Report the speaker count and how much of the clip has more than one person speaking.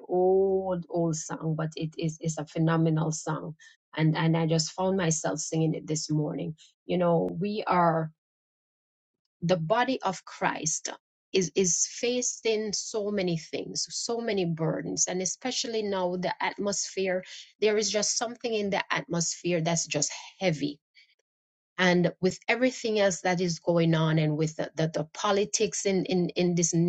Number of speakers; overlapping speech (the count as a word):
one, no overlap